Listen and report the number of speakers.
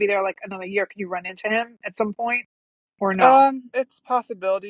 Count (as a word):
two